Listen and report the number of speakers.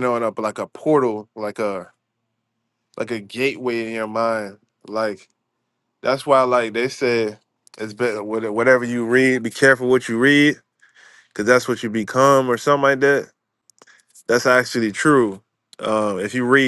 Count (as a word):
one